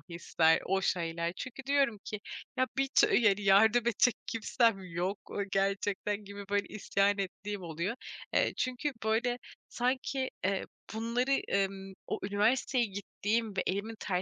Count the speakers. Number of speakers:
1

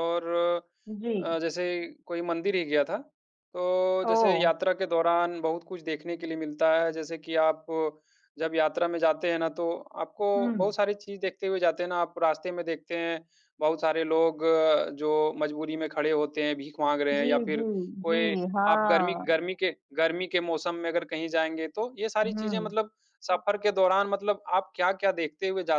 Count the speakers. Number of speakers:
2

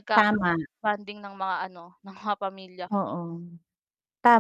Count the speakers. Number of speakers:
2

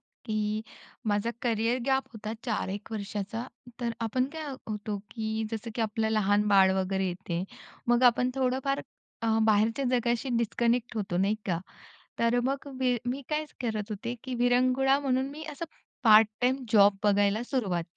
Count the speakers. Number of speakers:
1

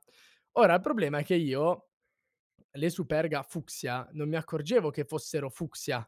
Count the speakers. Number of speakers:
1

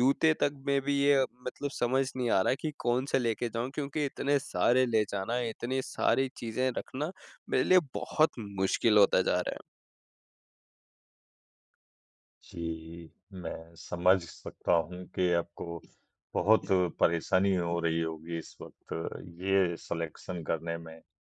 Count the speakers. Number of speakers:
2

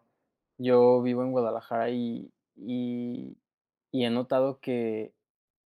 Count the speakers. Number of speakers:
1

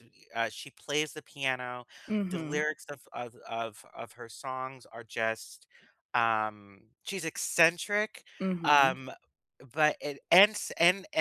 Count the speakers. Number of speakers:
2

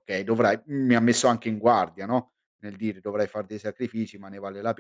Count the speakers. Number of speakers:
1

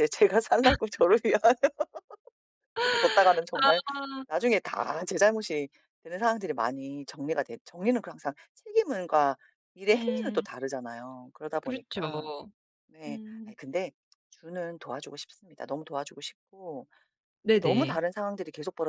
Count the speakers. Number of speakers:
2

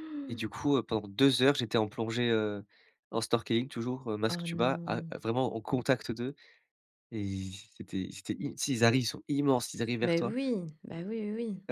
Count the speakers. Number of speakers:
2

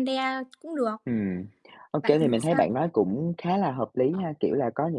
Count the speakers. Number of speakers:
2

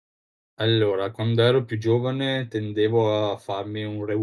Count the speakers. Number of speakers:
1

